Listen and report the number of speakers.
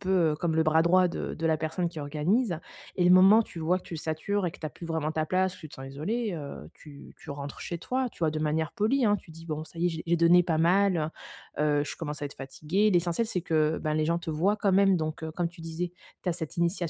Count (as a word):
one